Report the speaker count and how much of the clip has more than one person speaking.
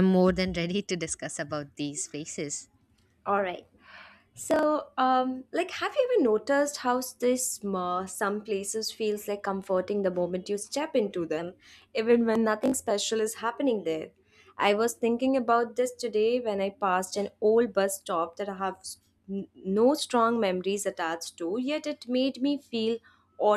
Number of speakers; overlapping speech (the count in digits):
2, no overlap